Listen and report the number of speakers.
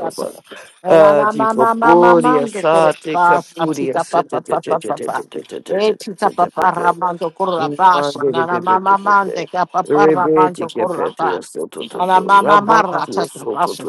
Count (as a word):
two